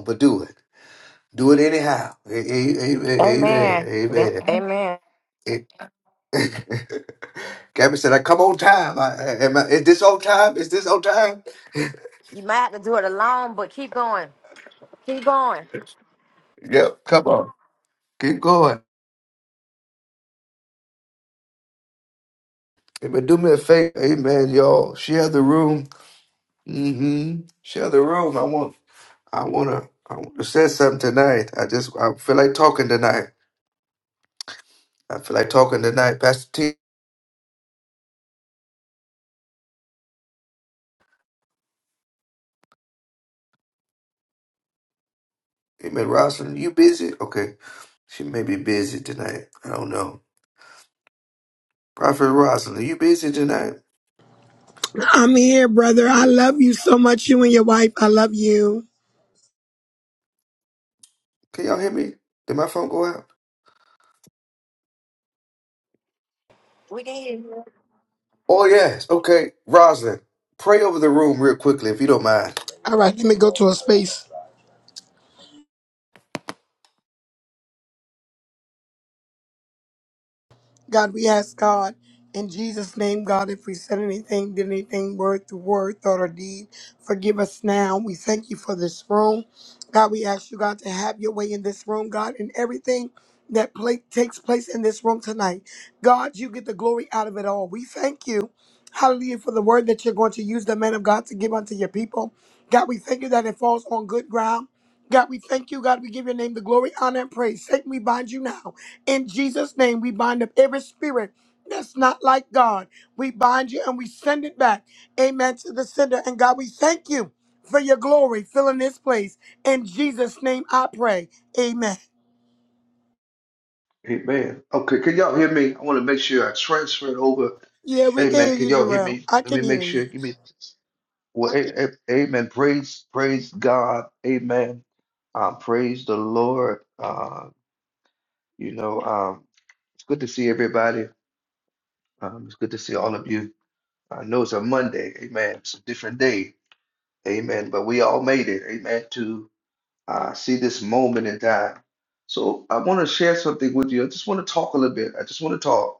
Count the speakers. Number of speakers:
3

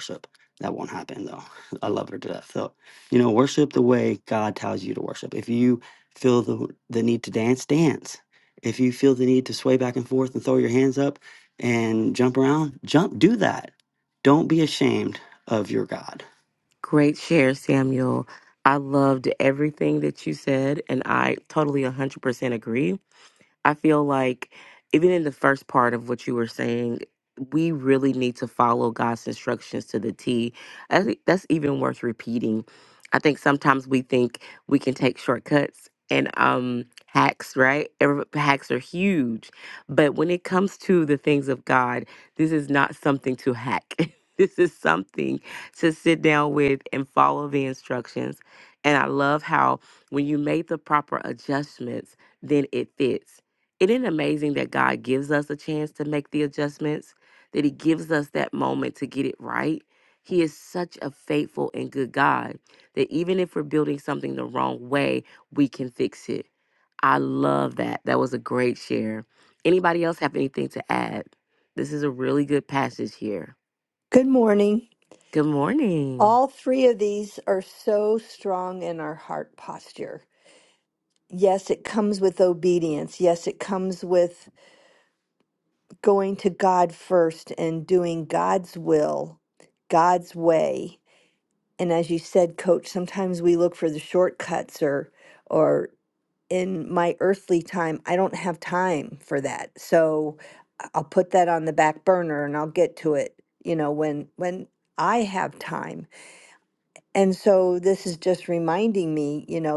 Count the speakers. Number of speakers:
3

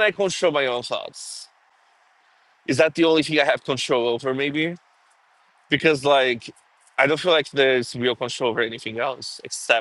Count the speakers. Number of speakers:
1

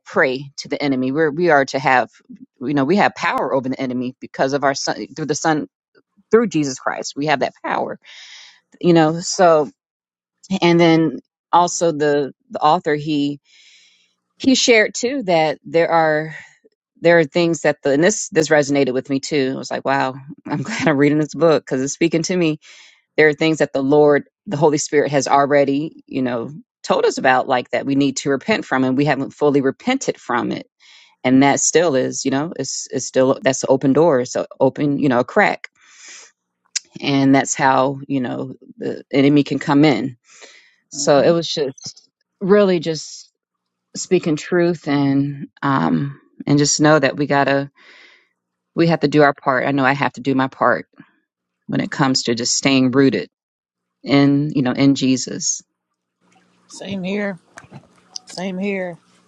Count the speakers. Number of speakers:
2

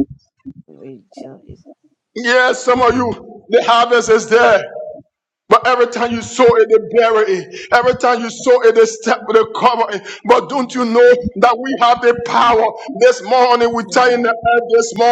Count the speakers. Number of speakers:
2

